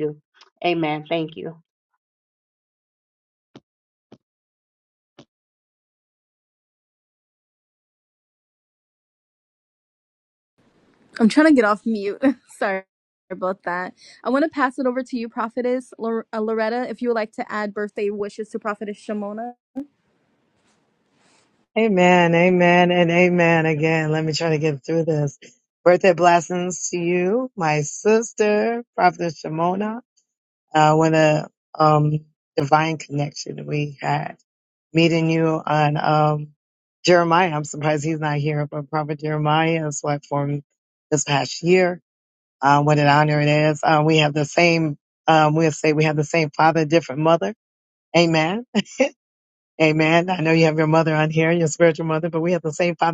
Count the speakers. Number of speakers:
3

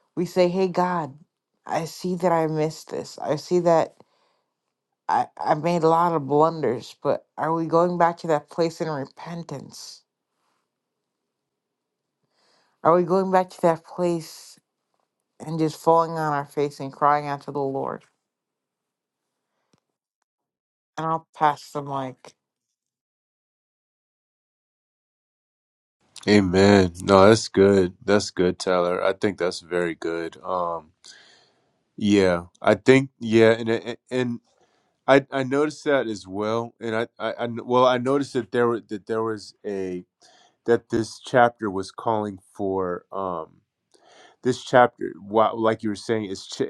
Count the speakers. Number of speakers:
2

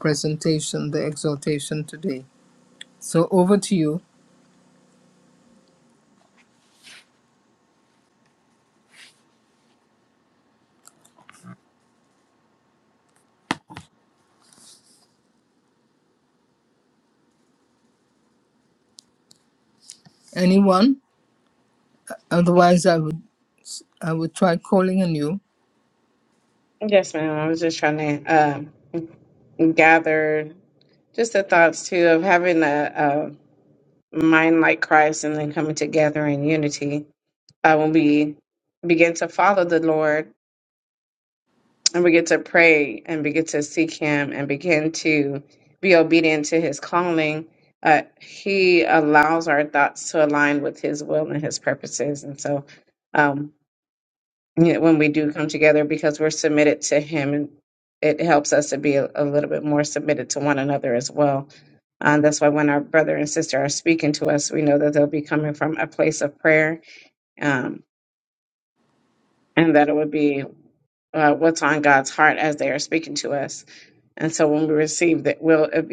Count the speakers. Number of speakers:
2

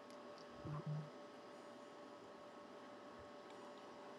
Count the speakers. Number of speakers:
0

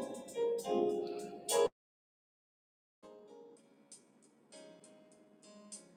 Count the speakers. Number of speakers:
0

